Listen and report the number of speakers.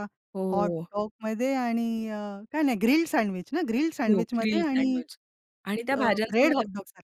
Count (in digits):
2